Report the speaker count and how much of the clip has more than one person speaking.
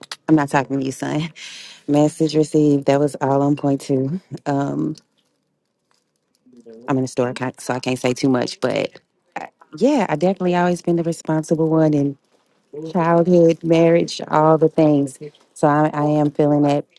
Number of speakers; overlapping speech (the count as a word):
one, no overlap